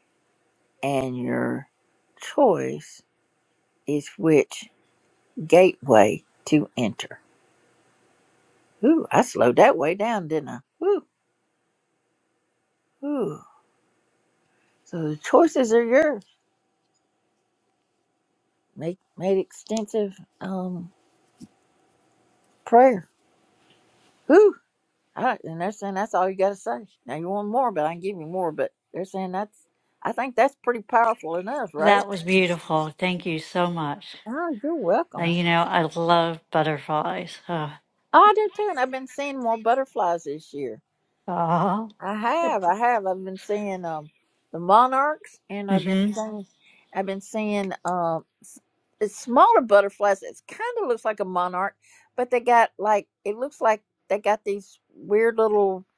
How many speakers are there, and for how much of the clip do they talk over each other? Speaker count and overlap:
2, about 1%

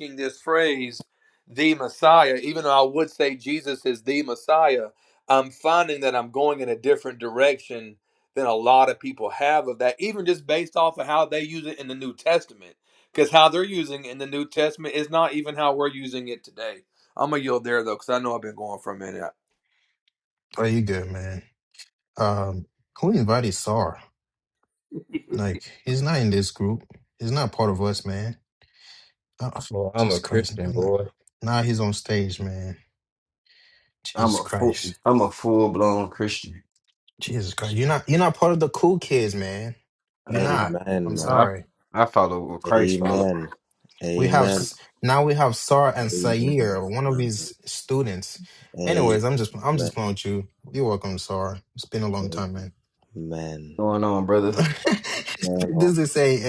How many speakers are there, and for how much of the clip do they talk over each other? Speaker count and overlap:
4, about 9%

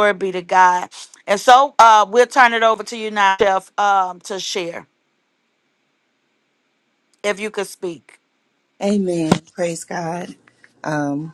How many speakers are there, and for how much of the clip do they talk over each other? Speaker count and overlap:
2, no overlap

